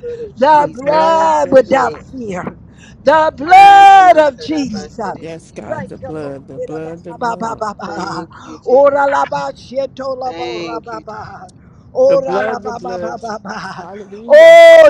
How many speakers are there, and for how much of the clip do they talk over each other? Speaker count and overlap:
three, about 60%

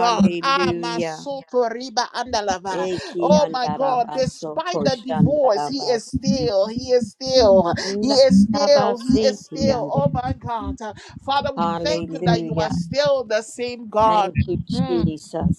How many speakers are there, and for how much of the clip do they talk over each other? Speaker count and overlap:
two, about 39%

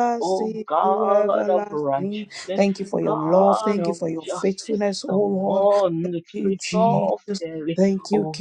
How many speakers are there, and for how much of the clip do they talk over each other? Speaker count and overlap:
two, about 62%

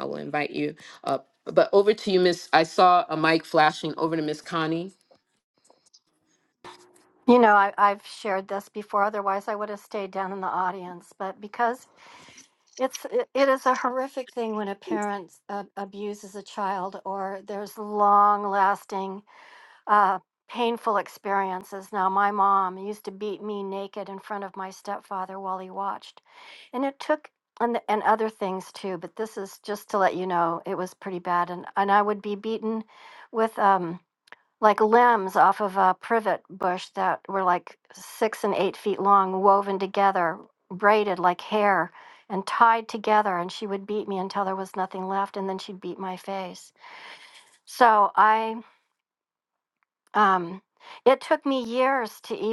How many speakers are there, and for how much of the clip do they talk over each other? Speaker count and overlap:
two, no overlap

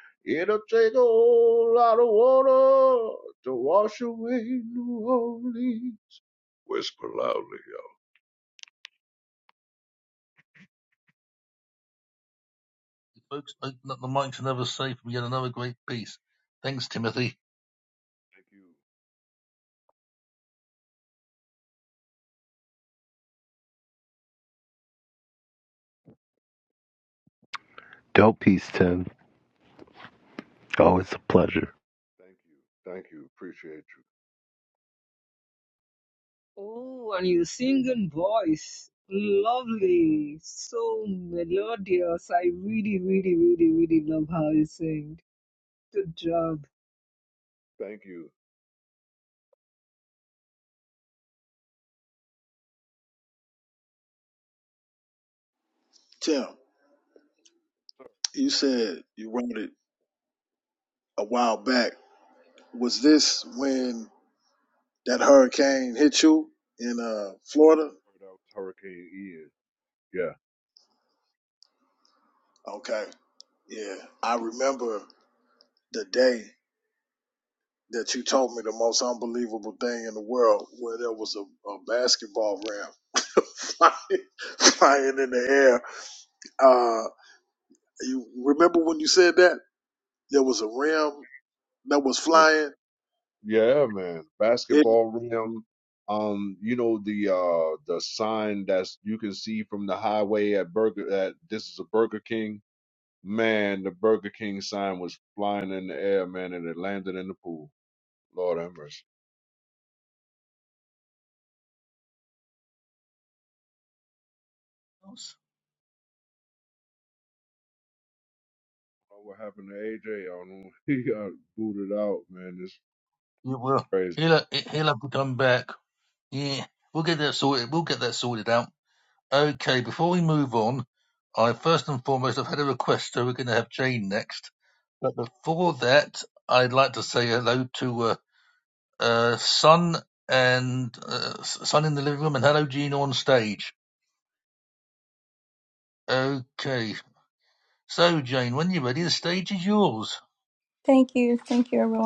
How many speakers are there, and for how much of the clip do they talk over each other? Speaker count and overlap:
six, under 1%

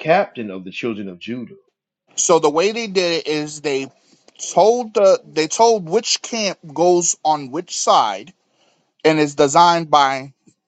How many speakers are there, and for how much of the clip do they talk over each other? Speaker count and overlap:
two, no overlap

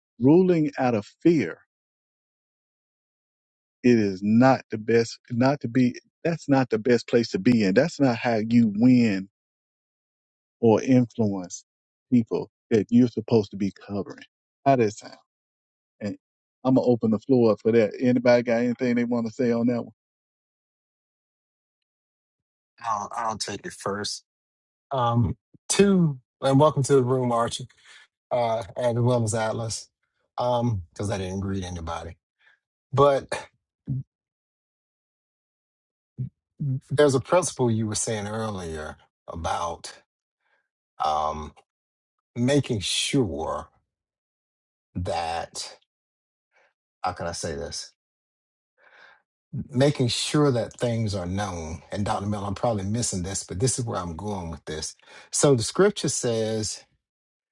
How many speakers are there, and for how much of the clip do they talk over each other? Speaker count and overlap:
two, no overlap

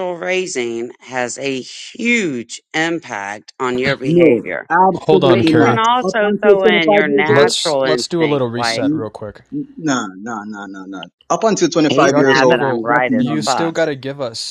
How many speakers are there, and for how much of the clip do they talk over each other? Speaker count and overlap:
three, about 45%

